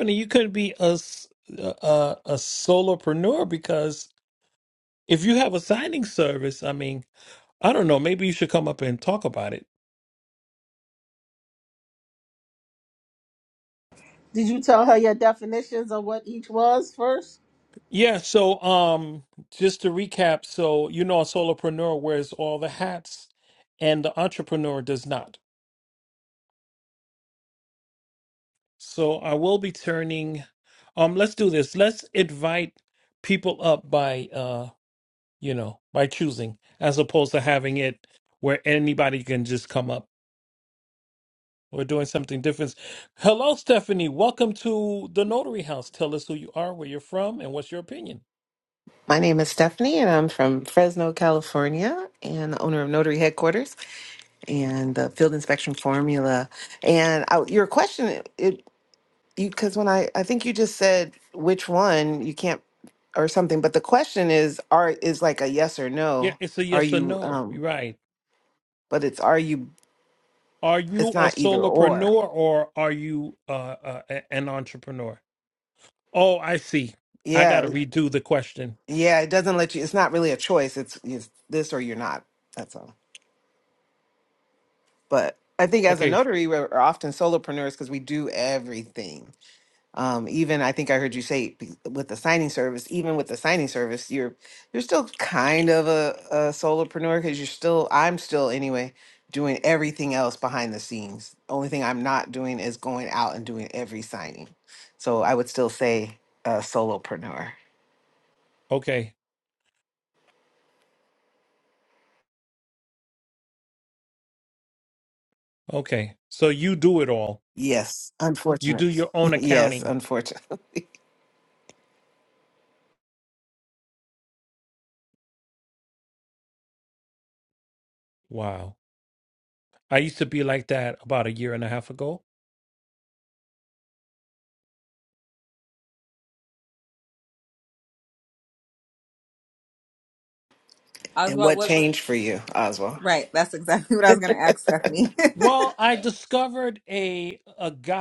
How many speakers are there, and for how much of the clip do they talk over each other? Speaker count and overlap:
4, about 3%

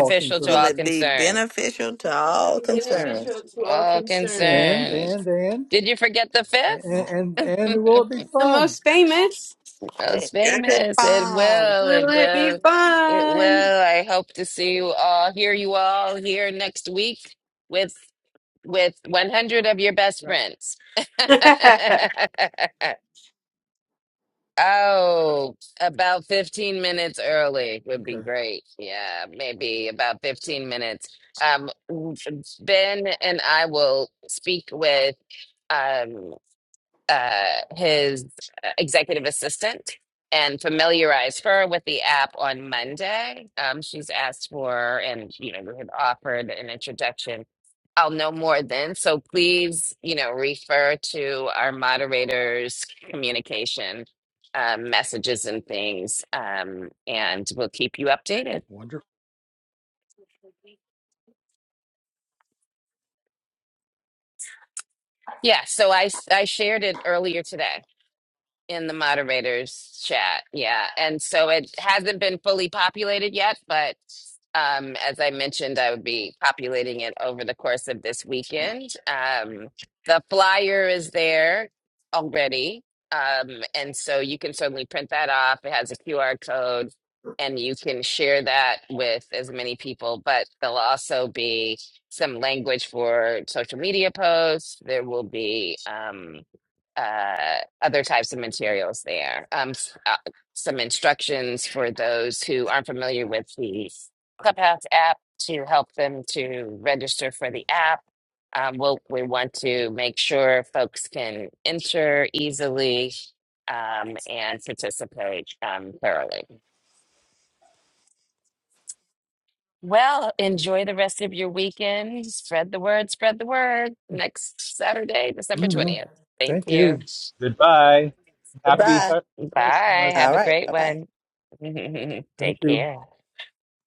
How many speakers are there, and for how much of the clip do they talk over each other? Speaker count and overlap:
5, about 8%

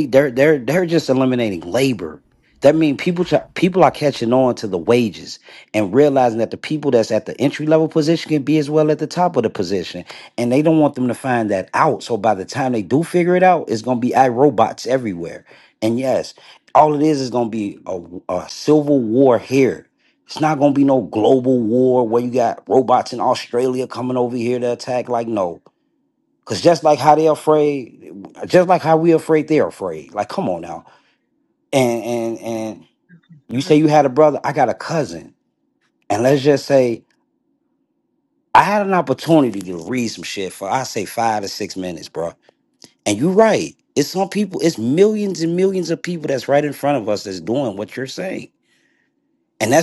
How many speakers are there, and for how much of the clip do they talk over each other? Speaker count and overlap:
1, no overlap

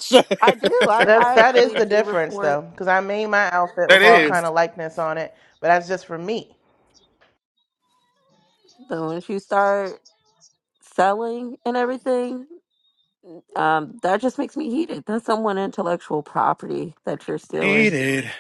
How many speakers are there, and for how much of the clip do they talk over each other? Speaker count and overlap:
3, about 13%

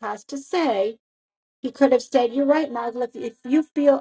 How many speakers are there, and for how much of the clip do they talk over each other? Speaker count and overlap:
1, no overlap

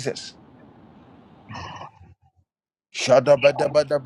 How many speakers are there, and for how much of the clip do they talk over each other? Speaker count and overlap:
1, no overlap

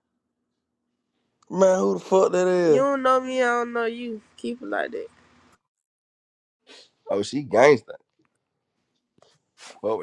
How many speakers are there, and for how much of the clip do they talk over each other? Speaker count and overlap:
3, about 2%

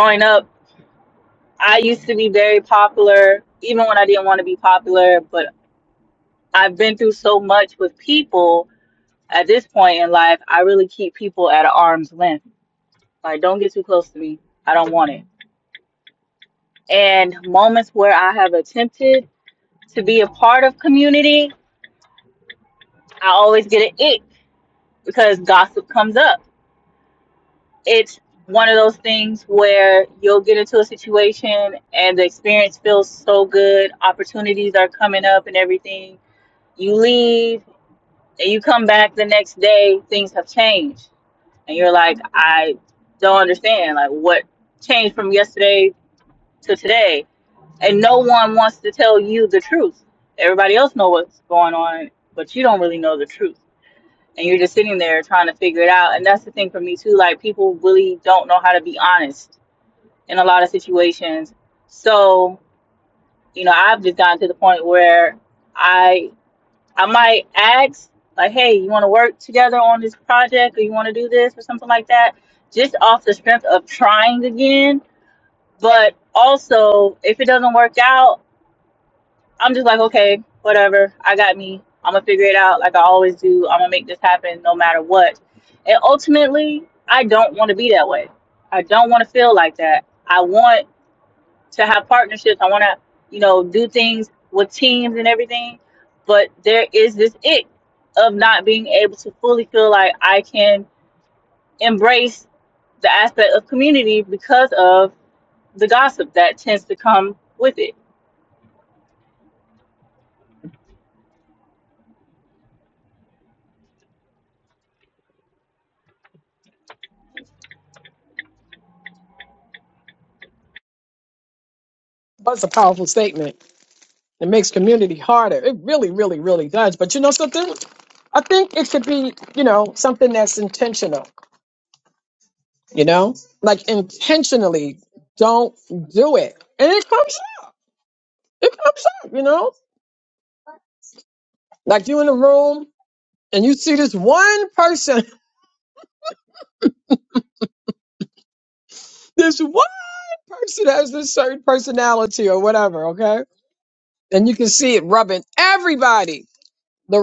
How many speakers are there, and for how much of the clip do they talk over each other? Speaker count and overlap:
2, no overlap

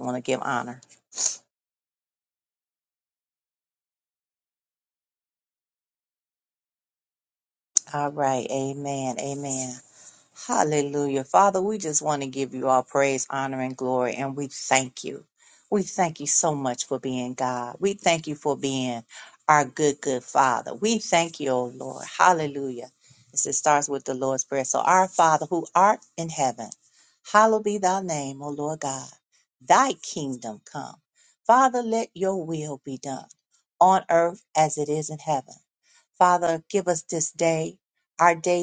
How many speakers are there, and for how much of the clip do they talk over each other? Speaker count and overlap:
1, no overlap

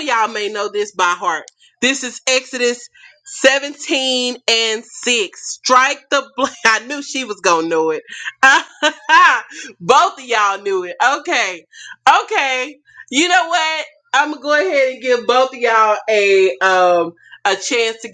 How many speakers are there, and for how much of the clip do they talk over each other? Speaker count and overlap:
1, no overlap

